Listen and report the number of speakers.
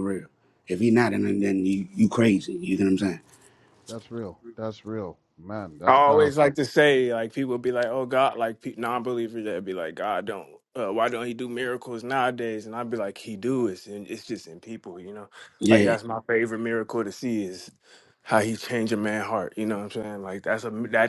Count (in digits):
3